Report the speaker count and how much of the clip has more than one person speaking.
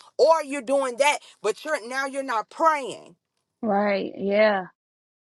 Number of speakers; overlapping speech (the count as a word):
two, no overlap